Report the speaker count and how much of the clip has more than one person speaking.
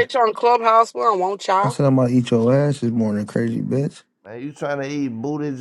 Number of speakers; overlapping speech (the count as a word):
three, about 2%